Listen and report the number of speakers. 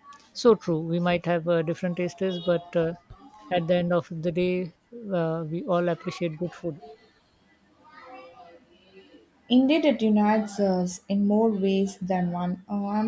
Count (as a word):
two